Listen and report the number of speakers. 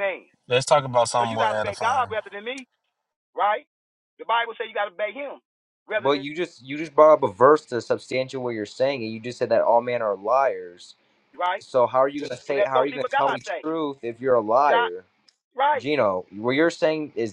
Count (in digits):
3